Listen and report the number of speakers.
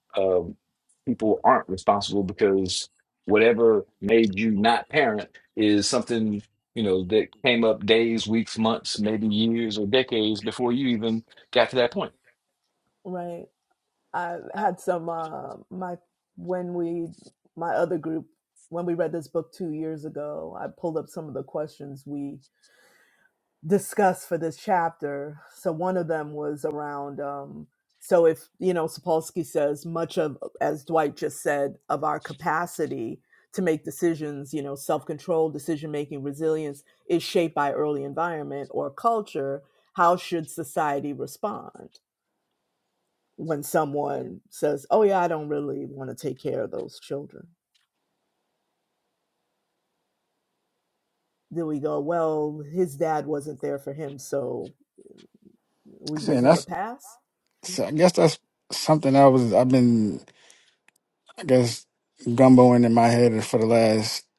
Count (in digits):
3